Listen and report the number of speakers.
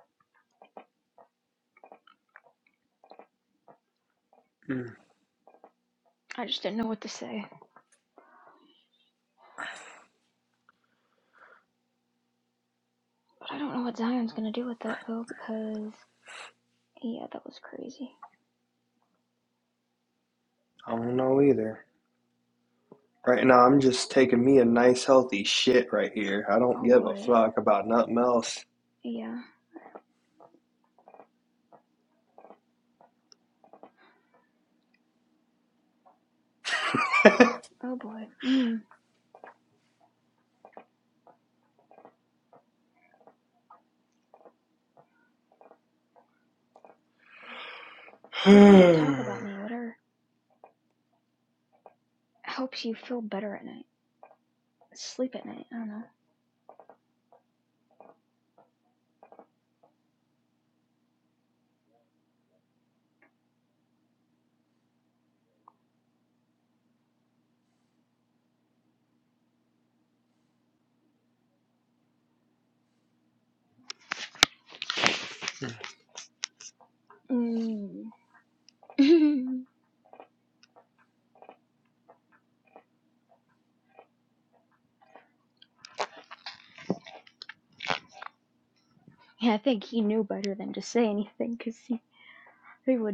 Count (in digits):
2